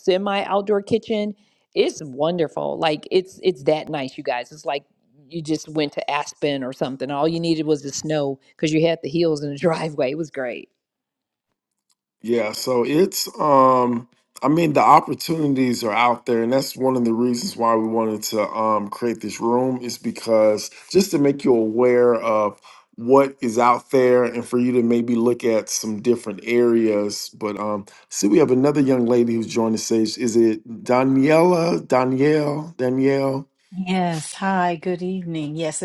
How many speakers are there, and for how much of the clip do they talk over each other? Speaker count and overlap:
3, no overlap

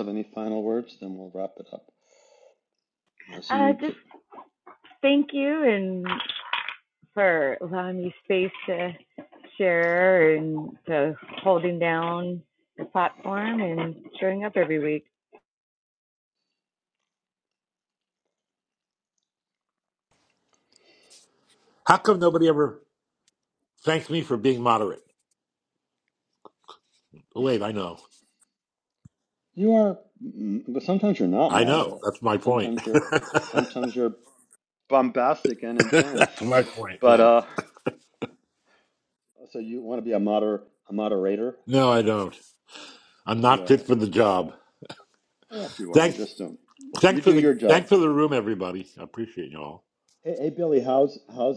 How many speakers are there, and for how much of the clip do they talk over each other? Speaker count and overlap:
3, about 7%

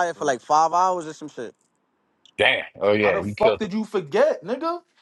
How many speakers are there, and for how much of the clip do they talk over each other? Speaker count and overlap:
3, about 11%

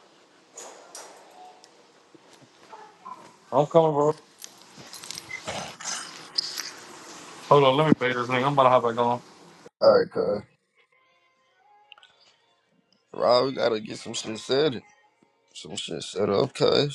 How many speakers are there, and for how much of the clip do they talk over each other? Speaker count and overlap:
2, no overlap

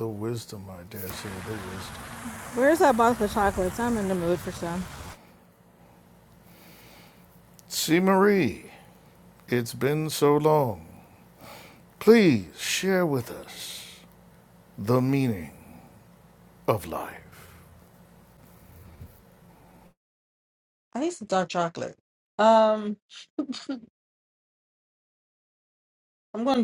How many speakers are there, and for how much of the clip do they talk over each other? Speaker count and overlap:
3, no overlap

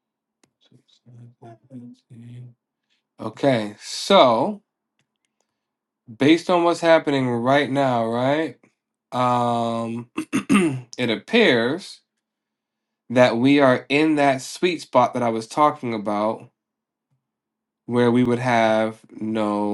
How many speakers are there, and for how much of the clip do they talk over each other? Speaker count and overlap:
1, no overlap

